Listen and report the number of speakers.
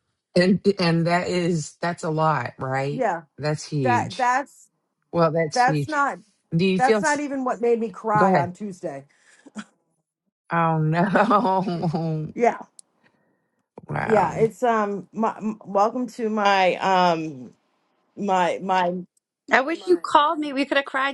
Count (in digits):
3